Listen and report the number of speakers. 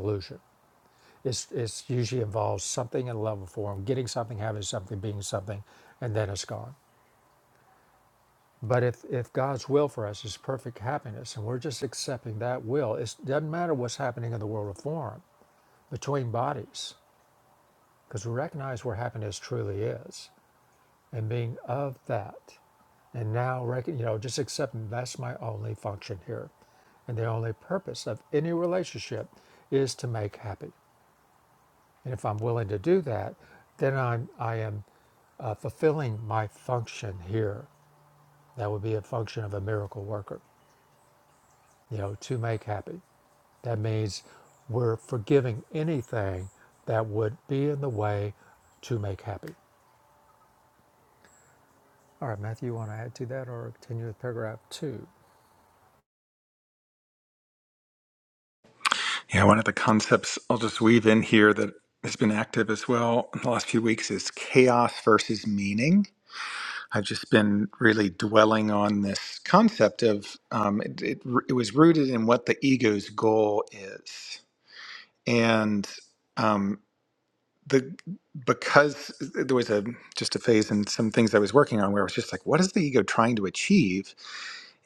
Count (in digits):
2